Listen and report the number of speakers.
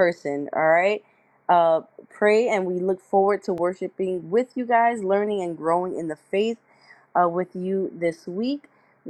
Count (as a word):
one